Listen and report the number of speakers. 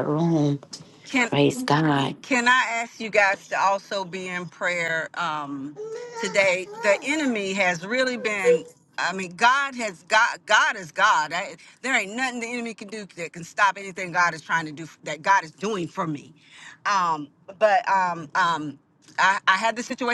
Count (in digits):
2